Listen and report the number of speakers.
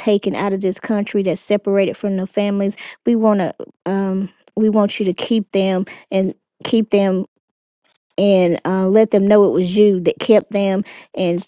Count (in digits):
1